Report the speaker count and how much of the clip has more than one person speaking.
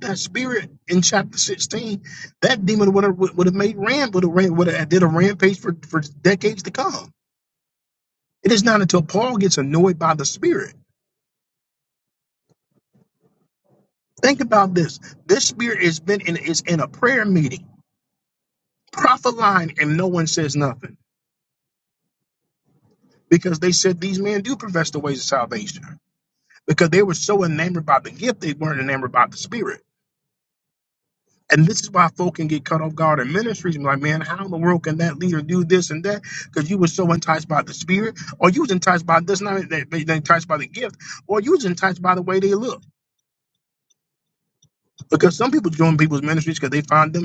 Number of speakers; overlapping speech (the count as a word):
one, no overlap